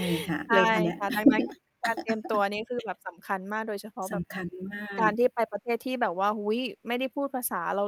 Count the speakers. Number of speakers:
2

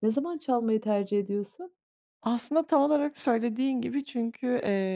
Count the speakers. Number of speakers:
2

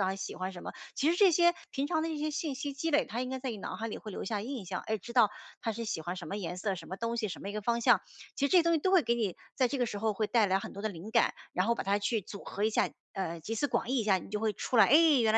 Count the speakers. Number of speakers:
1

